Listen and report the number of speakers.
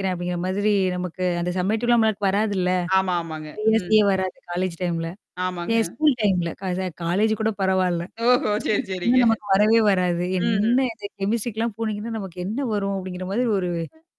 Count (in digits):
2